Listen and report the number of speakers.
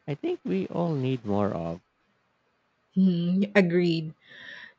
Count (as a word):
two